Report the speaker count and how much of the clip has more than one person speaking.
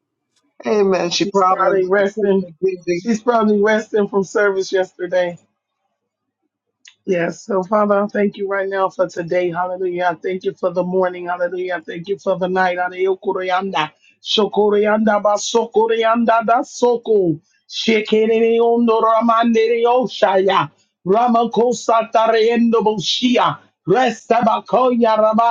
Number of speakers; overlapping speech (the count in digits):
2, about 3%